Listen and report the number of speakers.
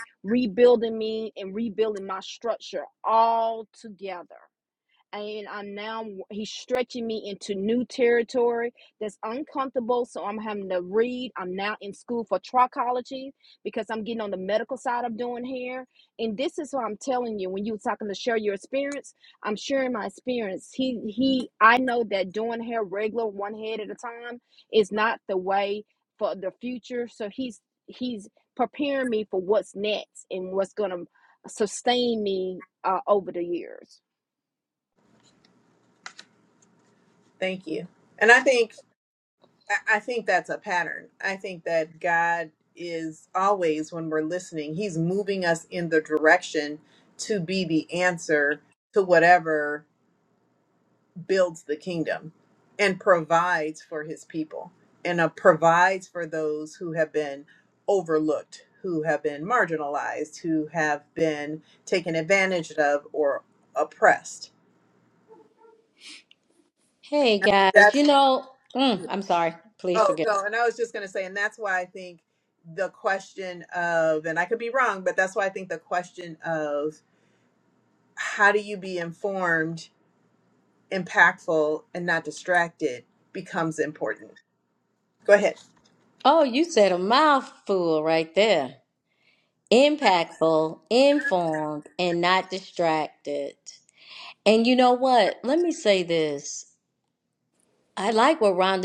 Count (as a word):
three